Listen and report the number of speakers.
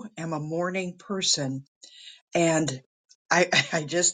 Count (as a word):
one